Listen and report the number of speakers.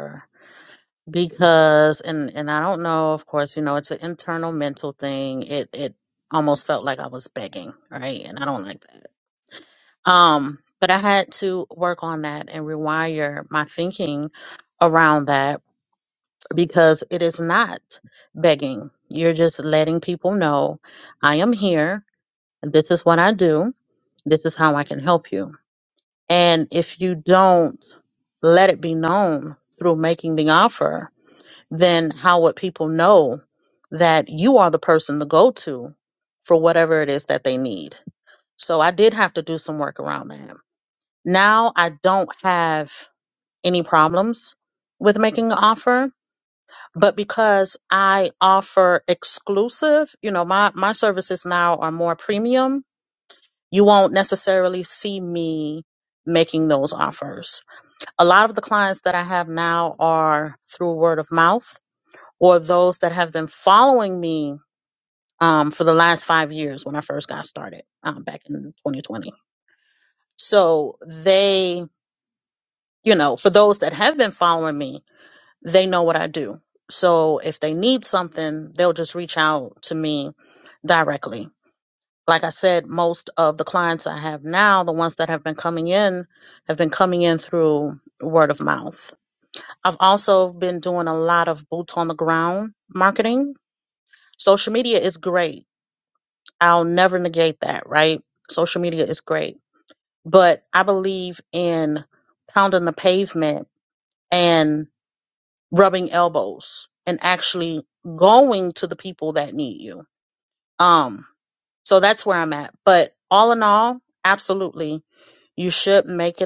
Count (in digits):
1